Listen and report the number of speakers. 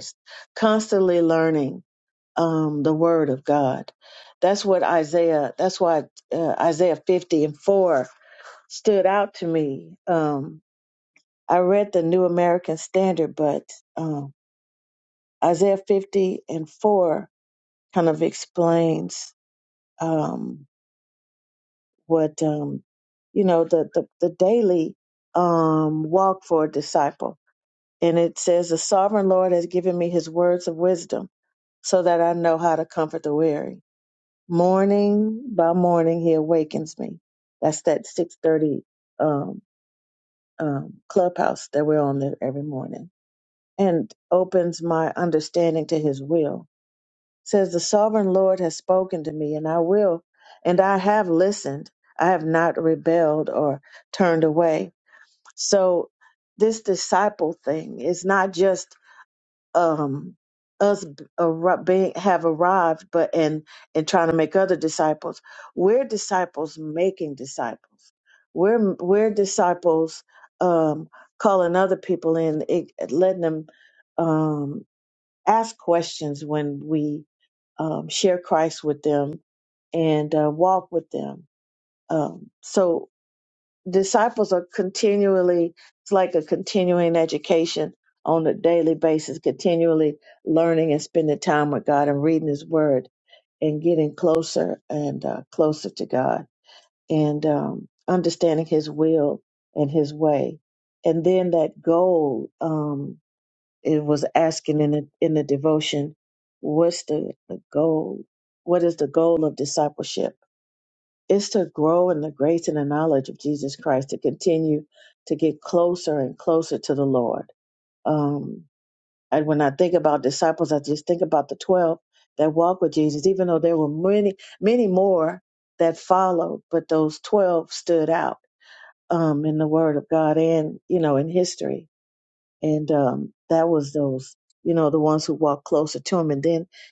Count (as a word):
one